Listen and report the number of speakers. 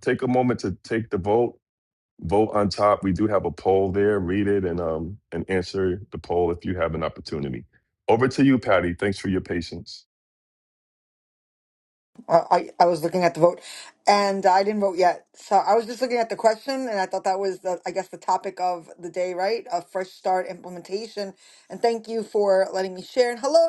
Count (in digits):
2